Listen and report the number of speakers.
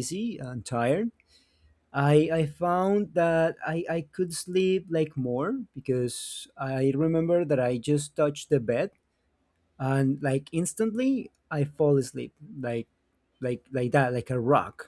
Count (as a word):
one